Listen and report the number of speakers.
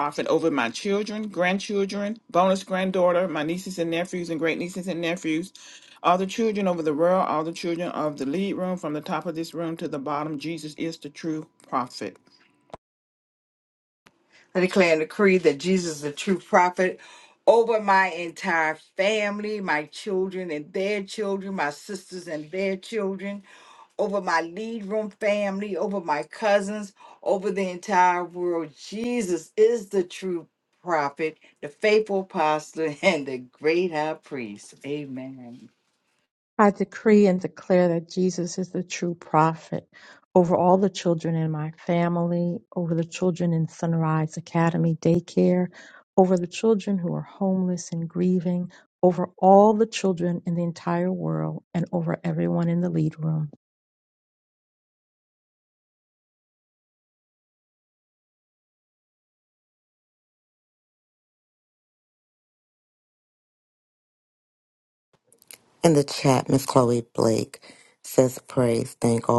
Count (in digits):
4